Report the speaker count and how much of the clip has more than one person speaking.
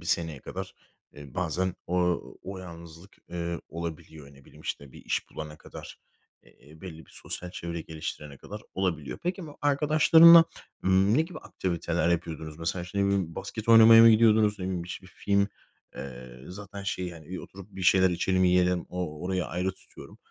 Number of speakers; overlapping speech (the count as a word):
one, no overlap